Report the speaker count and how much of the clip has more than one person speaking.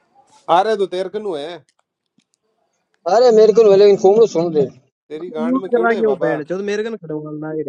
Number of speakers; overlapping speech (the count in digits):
3, about 16%